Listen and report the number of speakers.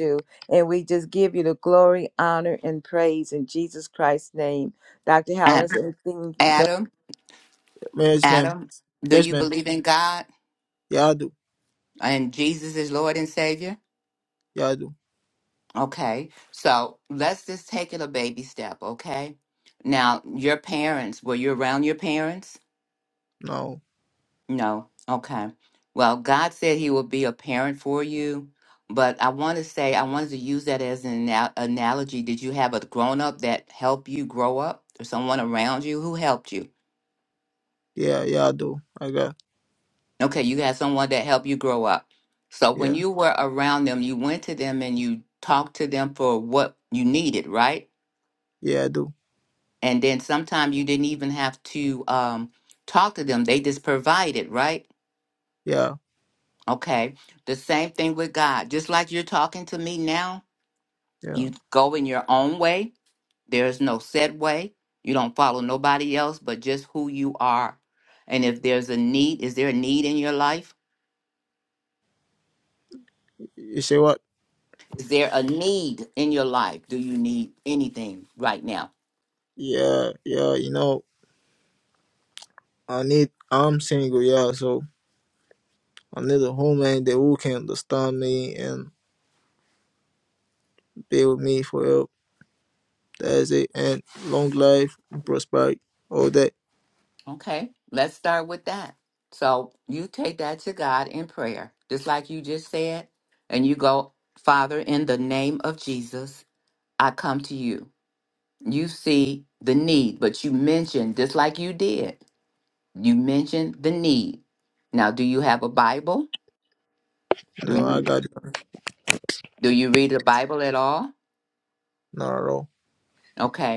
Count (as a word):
three